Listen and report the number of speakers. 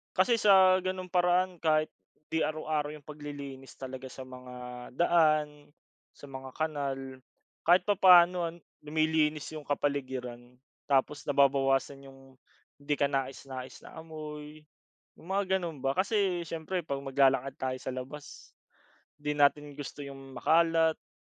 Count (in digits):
1